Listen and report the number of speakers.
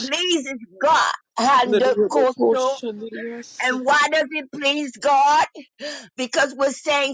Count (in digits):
2